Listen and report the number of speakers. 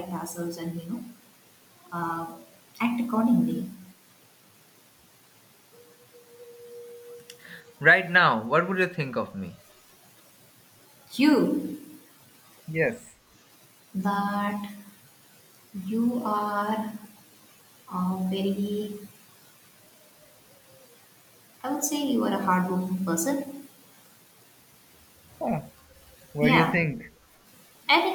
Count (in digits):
2